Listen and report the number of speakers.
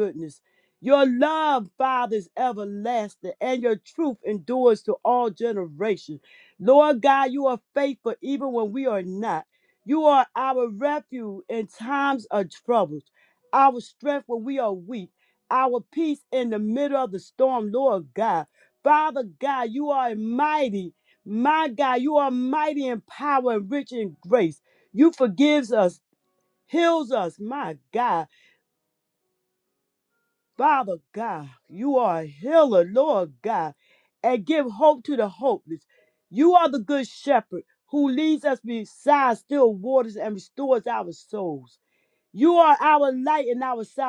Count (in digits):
1